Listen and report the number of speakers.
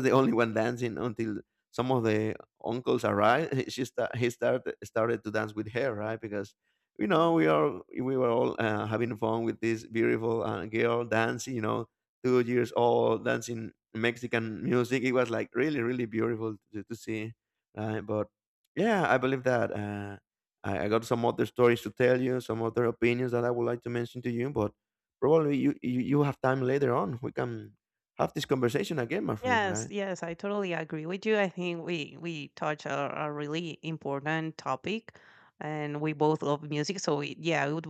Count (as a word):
two